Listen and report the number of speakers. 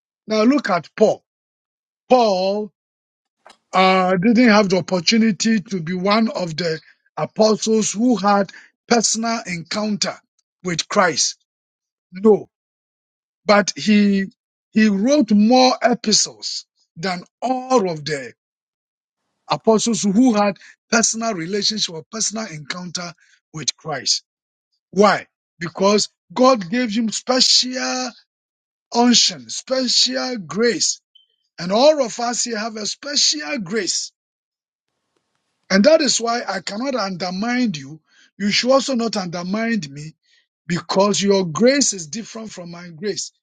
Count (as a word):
one